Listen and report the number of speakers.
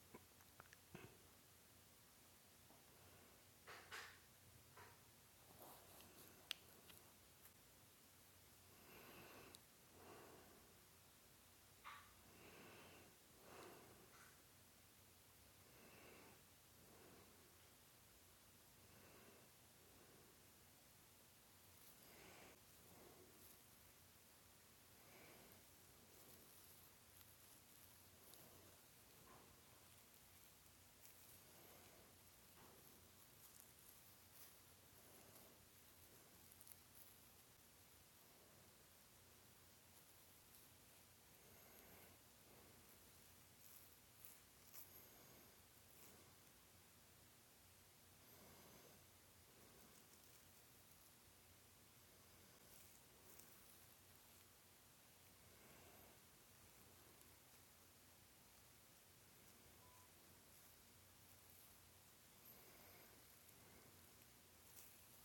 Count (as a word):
zero